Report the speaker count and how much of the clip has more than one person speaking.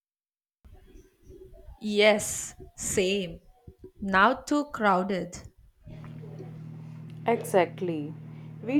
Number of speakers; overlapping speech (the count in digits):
2, no overlap